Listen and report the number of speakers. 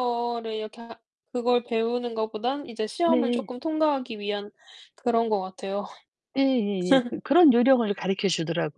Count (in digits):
2